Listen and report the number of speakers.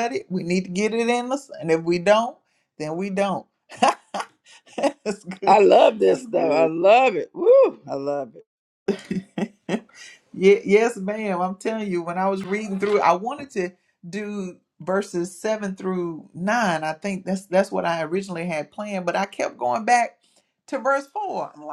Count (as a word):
two